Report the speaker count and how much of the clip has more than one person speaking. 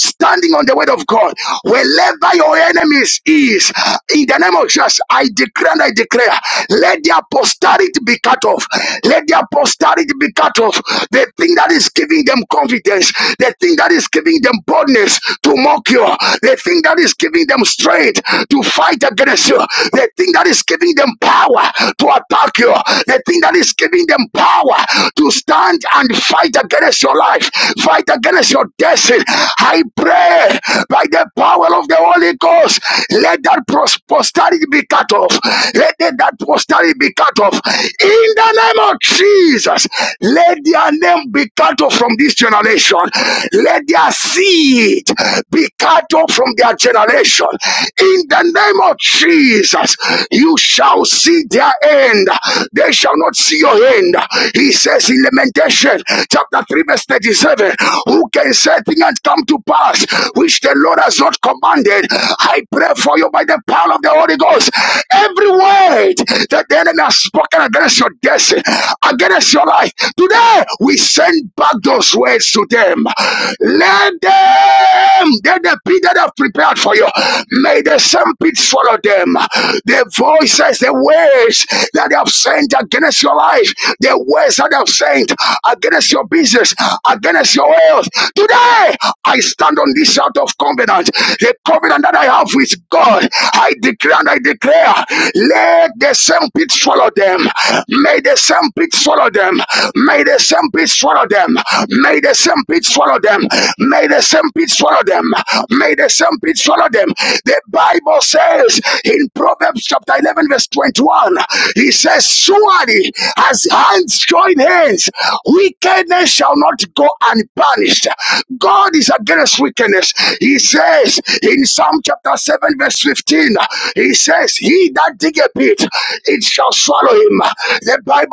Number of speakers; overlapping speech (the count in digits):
1, no overlap